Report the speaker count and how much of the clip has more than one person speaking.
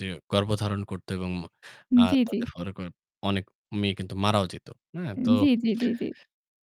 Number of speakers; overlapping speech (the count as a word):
two, about 6%